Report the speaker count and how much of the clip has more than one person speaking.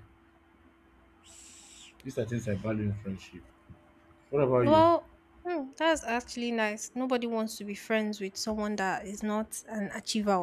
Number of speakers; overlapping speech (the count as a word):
two, about 2%